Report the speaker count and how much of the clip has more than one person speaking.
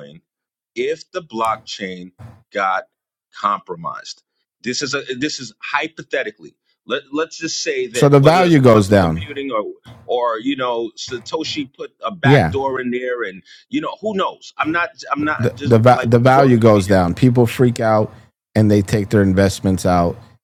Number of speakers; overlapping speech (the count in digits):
2, about 15%